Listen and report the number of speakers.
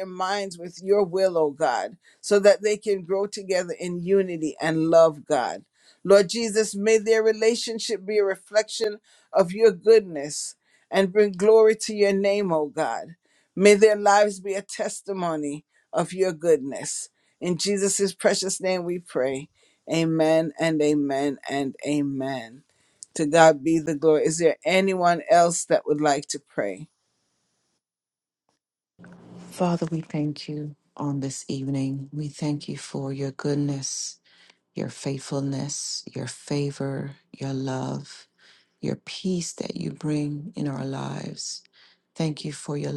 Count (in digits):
2